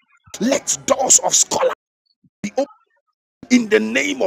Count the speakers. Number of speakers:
1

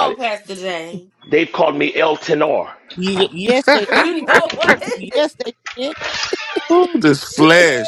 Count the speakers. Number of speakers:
4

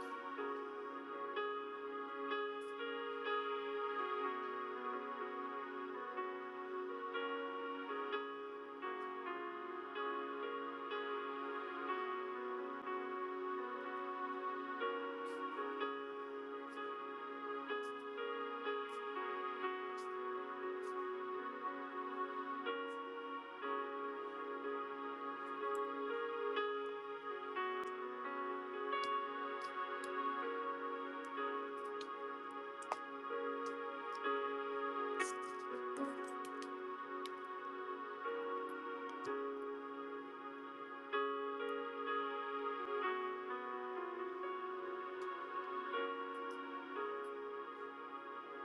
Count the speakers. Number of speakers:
0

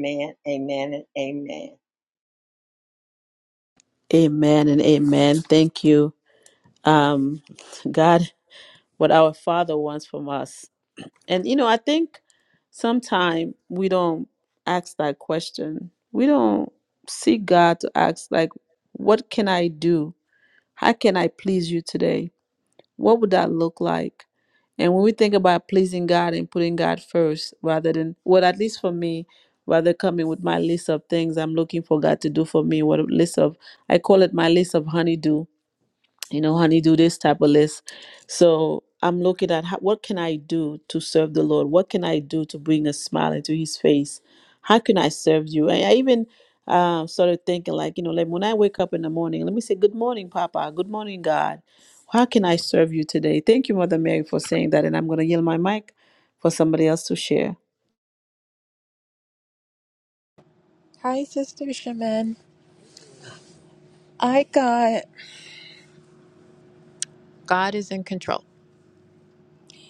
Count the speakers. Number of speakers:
3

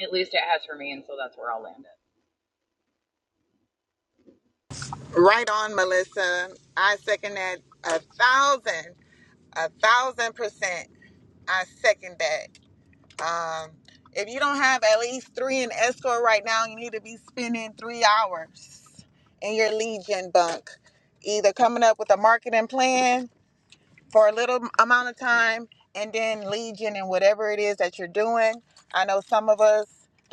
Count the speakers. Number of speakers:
2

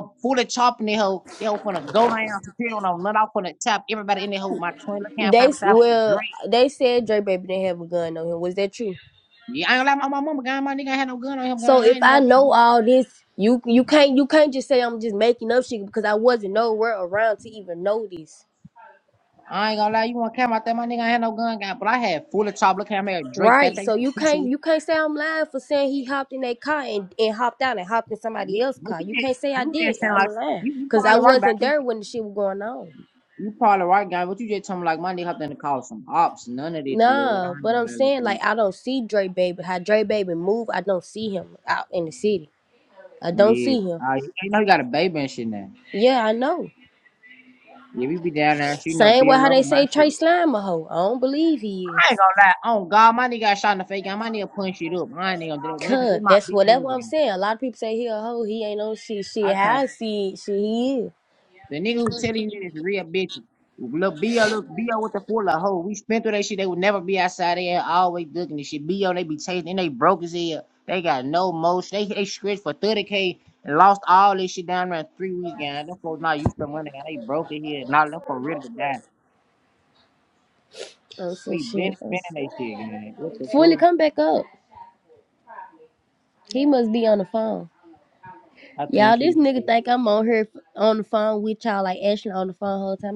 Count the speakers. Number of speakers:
2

